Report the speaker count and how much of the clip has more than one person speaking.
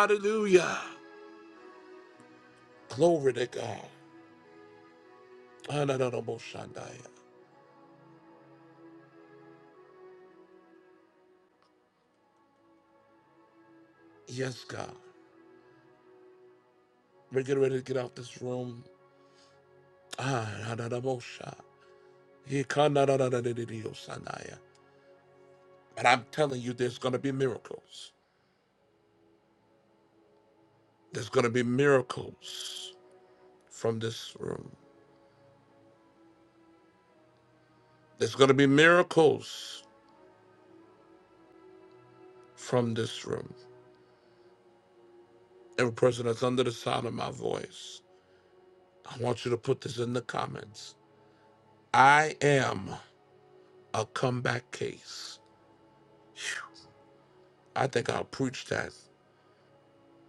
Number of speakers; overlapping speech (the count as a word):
one, no overlap